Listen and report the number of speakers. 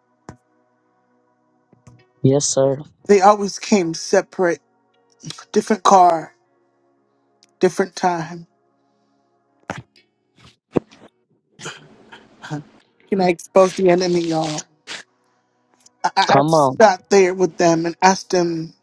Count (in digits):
2